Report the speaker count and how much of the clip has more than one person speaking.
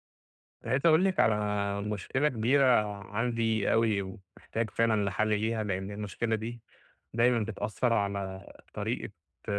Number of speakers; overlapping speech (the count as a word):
one, no overlap